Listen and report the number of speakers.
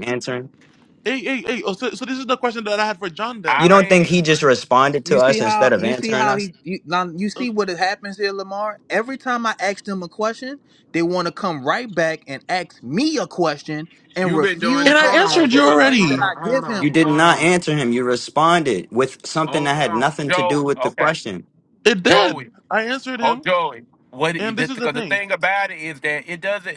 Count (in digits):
4